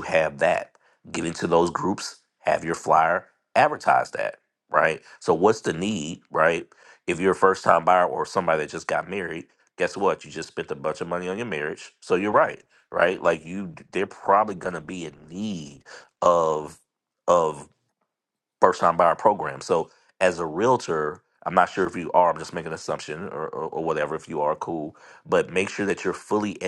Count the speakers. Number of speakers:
1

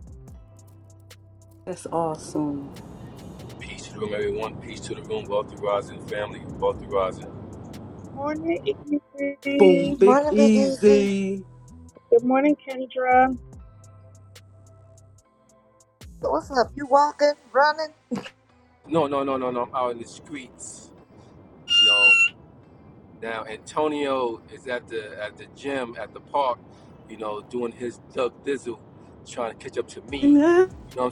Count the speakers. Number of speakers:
4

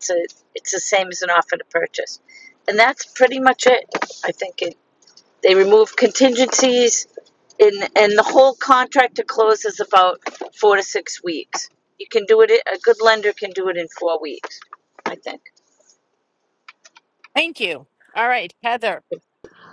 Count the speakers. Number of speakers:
2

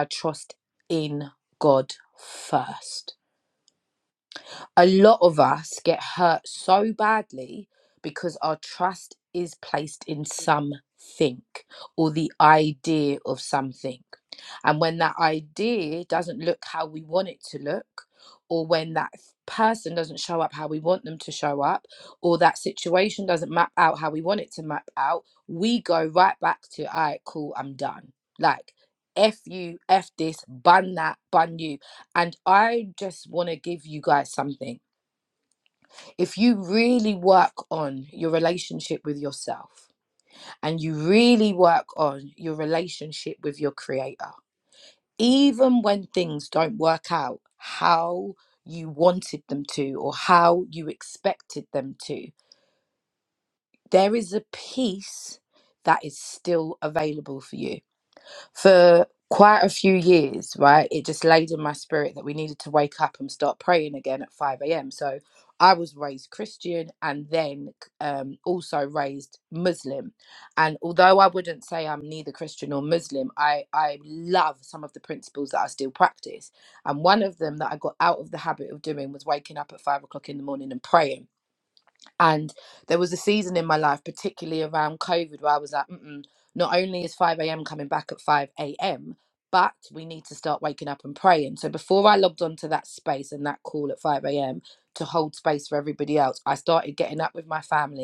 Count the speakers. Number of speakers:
1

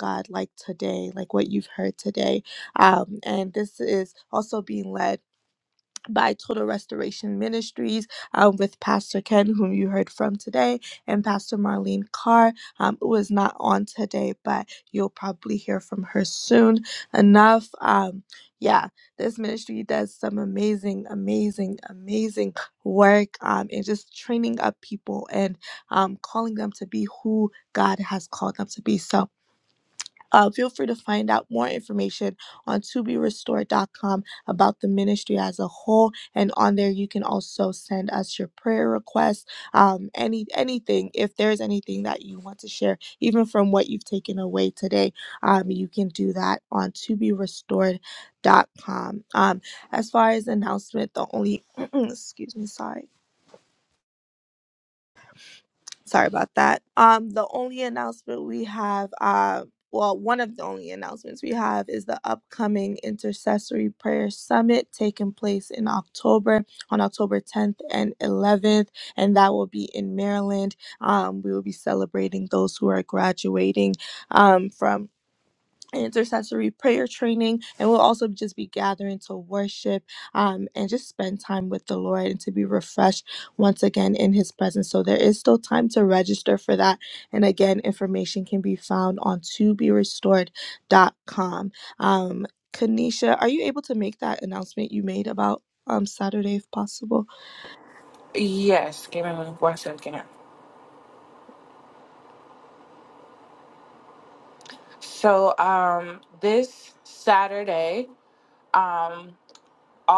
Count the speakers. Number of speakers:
2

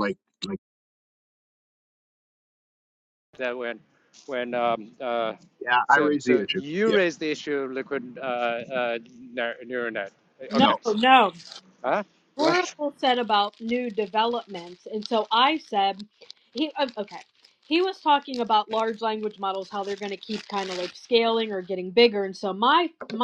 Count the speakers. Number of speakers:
3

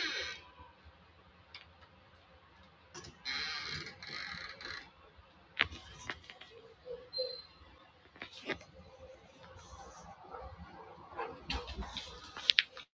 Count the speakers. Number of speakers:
0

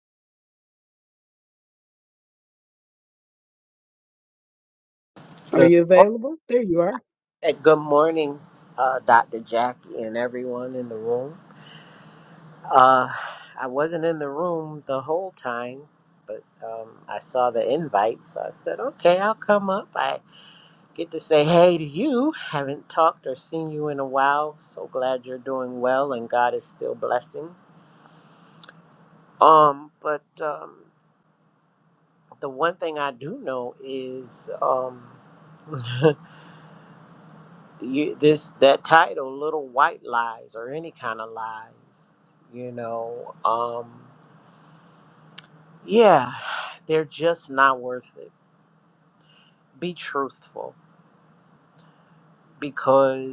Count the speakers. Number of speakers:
2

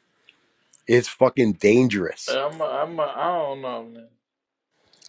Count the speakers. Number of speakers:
2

